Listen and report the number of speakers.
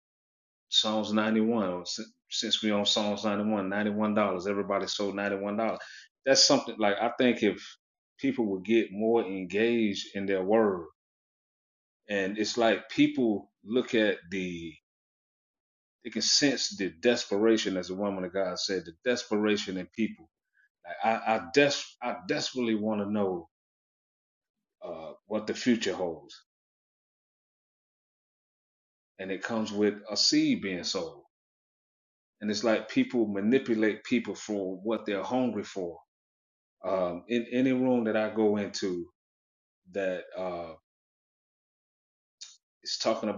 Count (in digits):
1